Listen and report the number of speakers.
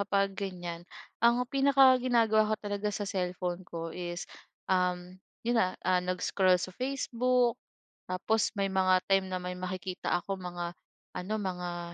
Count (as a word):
one